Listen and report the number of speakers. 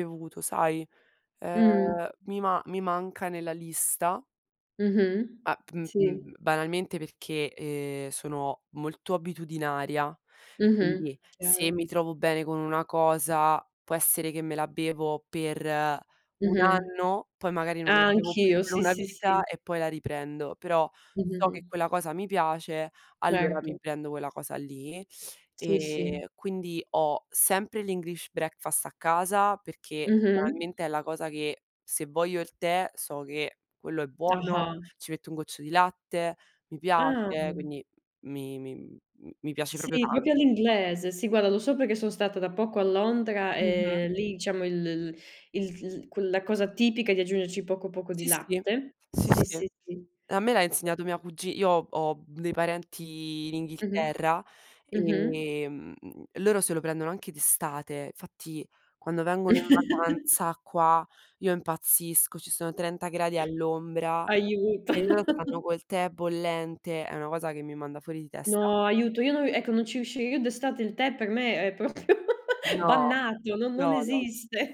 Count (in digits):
2